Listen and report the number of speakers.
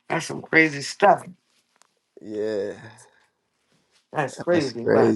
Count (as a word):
two